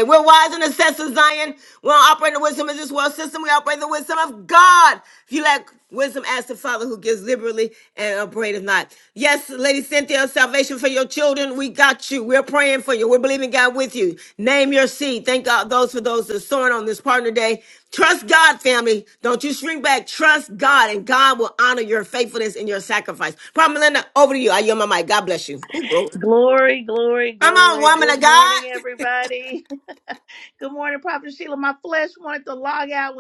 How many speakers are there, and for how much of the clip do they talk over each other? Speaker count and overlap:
2, about 4%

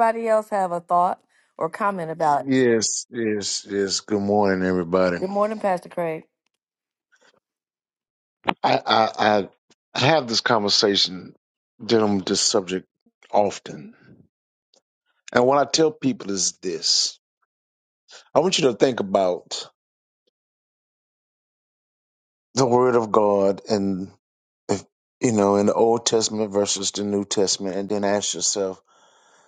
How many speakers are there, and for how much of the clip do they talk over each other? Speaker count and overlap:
2, under 1%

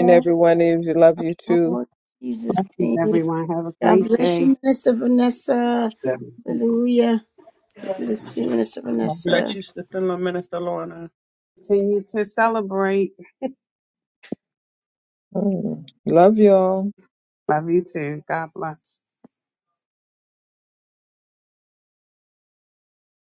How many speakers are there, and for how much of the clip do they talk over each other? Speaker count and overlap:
4, about 11%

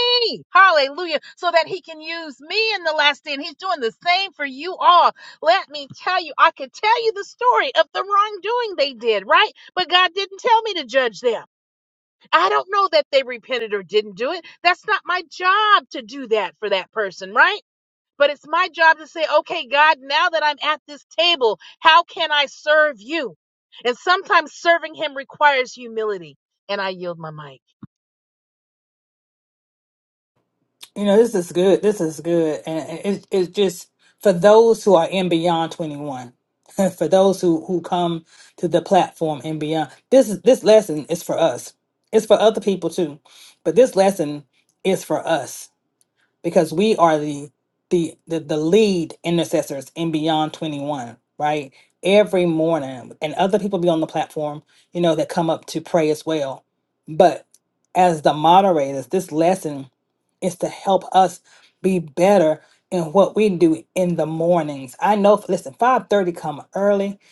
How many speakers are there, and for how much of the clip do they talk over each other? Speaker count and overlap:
2, no overlap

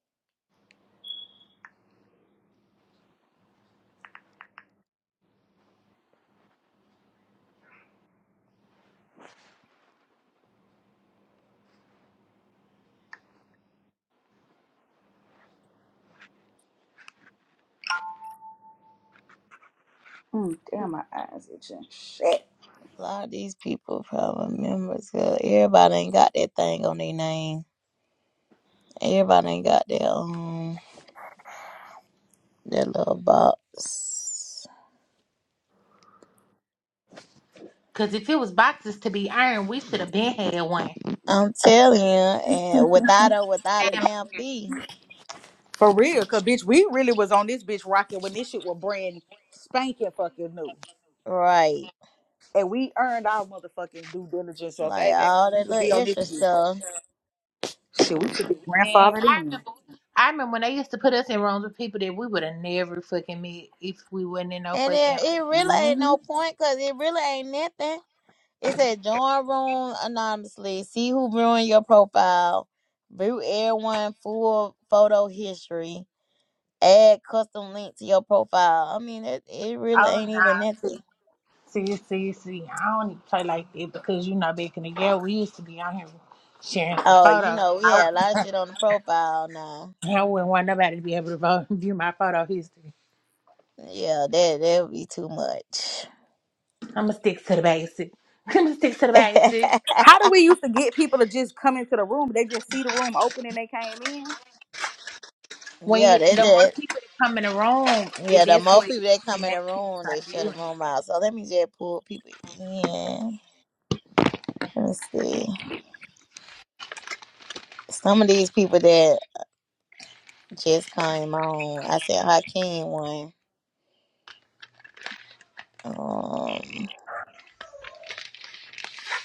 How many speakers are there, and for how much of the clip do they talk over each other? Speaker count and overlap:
3, about 7%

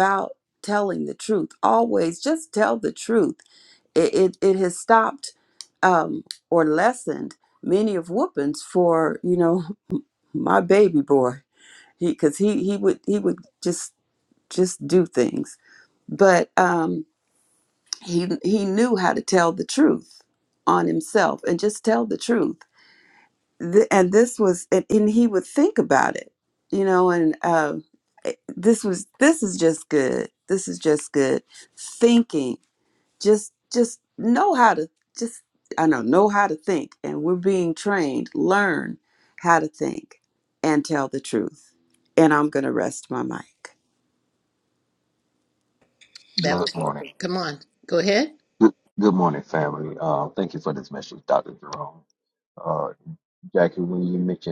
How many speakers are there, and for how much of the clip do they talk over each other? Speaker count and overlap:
3, about 1%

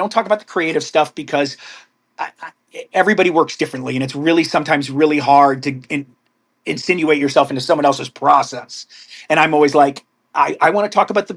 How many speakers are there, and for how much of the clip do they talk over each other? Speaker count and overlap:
1, no overlap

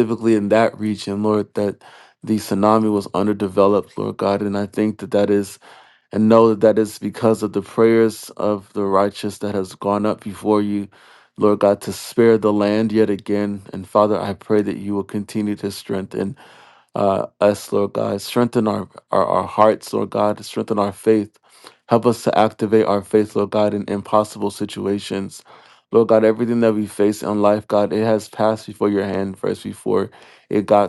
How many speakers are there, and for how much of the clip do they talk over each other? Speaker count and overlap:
1, no overlap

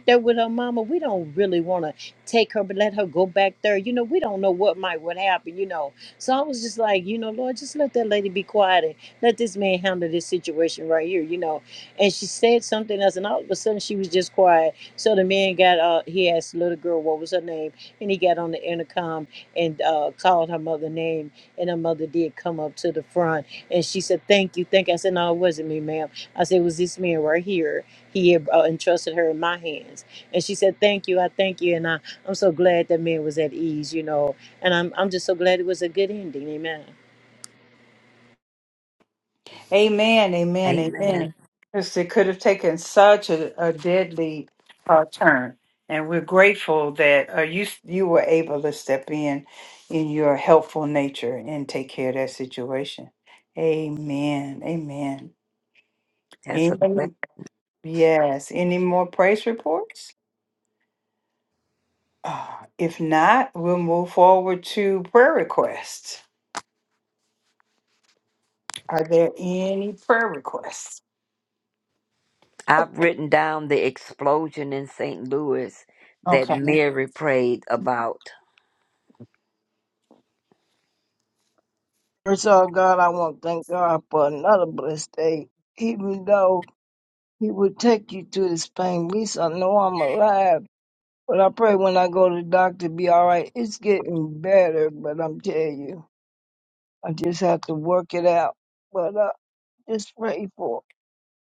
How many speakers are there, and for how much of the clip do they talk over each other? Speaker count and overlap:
4, about 1%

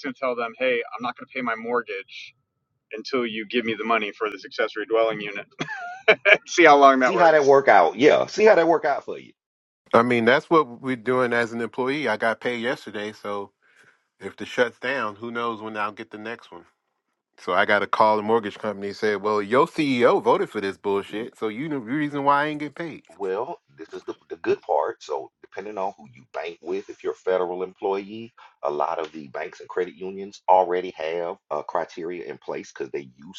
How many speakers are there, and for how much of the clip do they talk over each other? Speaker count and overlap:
3, about 1%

